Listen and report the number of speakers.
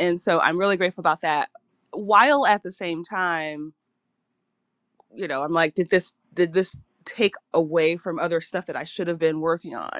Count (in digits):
1